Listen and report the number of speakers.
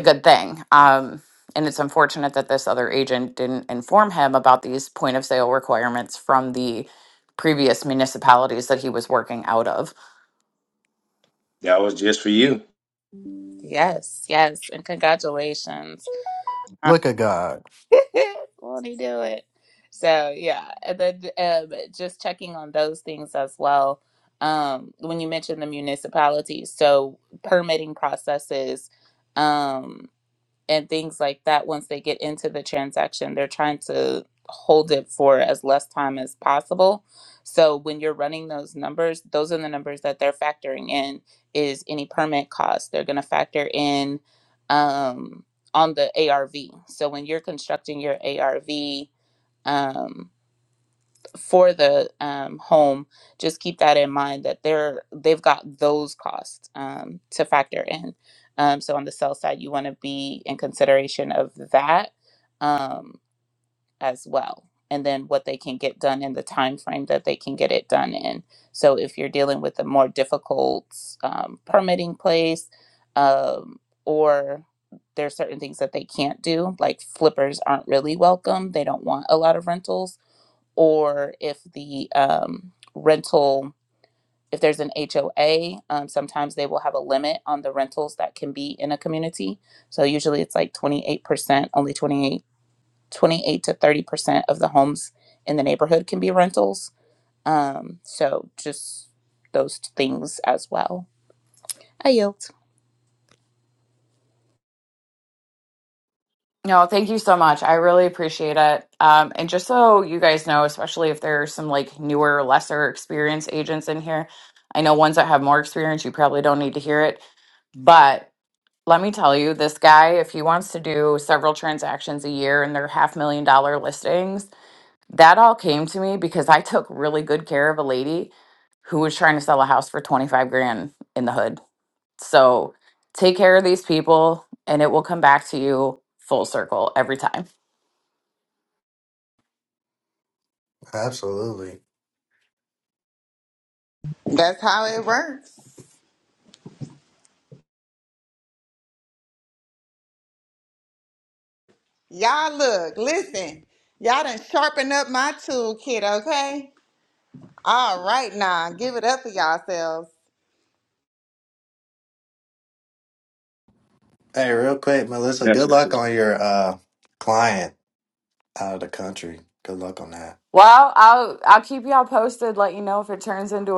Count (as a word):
five